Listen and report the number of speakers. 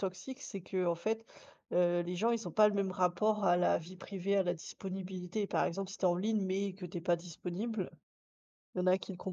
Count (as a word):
one